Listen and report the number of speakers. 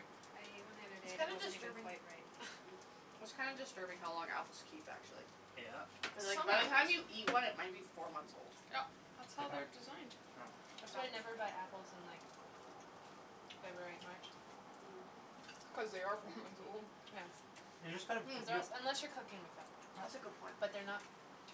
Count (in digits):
4